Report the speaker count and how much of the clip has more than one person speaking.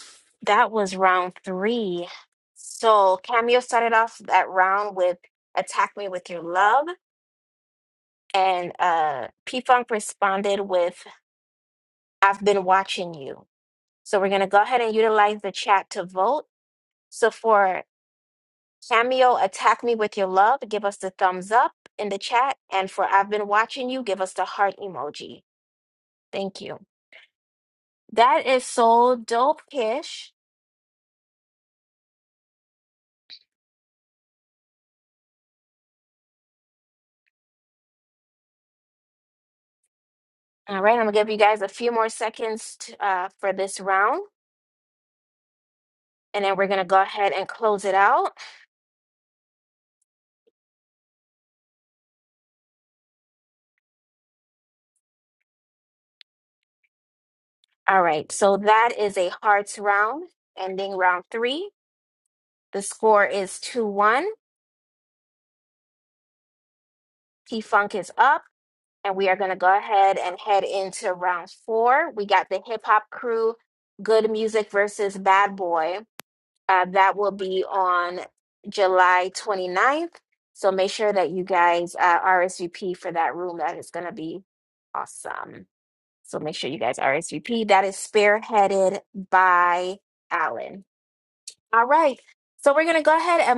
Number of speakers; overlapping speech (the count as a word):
one, no overlap